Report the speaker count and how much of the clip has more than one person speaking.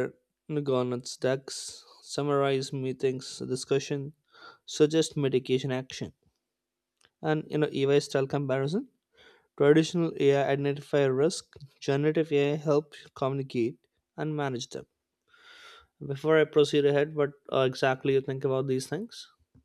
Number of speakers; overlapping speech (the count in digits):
1, no overlap